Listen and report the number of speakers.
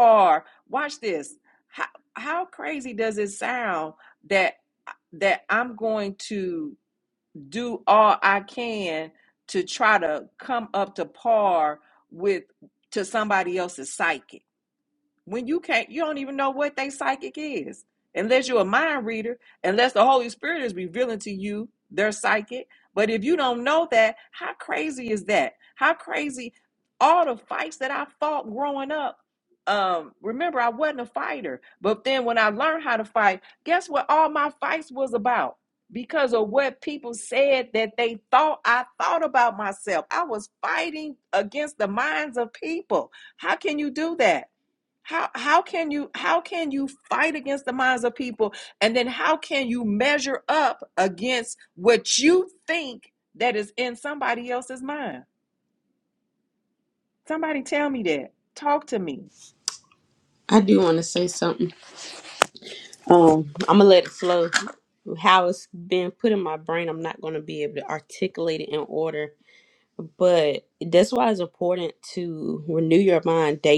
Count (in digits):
2